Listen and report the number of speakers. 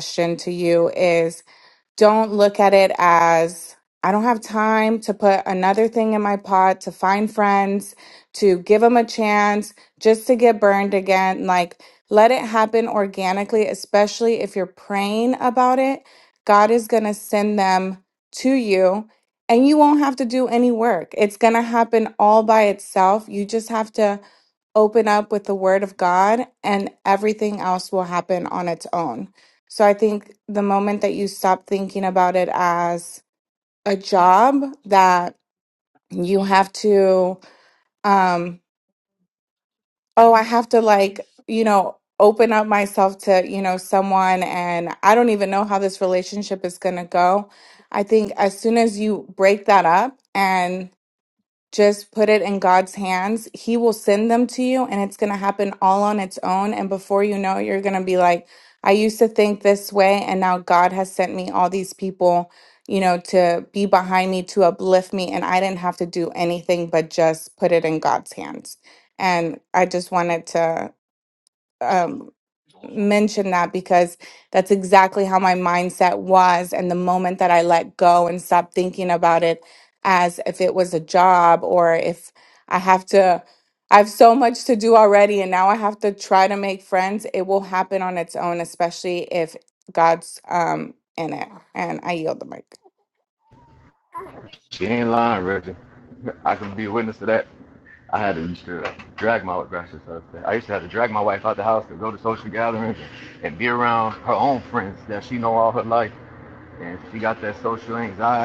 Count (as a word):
two